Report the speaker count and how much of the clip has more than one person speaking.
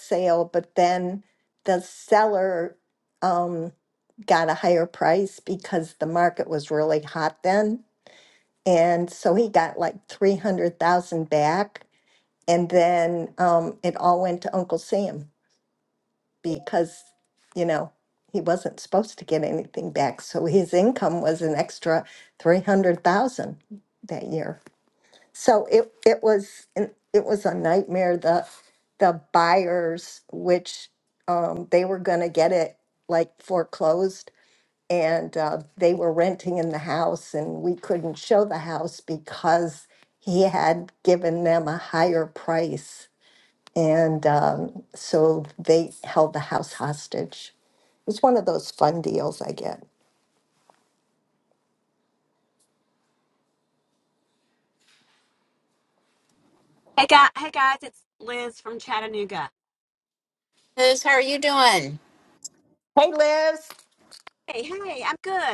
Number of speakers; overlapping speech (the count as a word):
three, no overlap